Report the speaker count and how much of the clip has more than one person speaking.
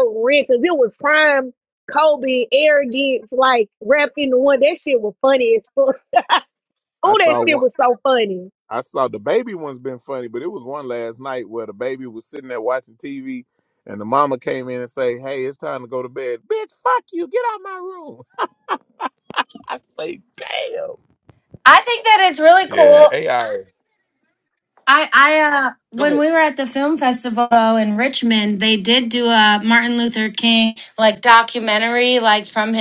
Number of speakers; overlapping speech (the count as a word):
three, about 4%